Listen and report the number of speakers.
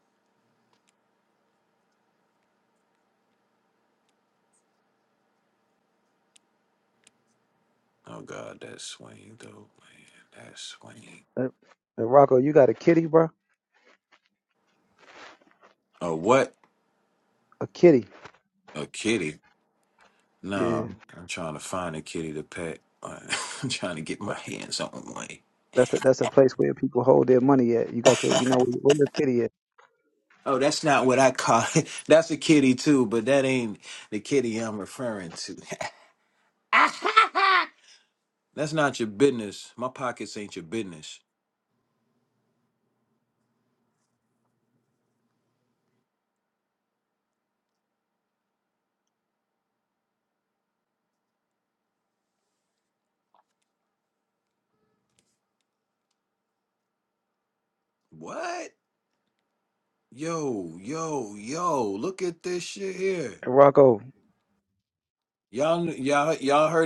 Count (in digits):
2